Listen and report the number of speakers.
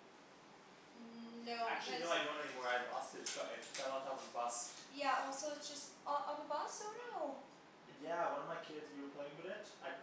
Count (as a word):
two